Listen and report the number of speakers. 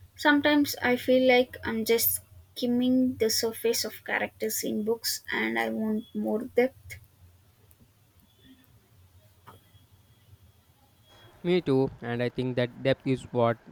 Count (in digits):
2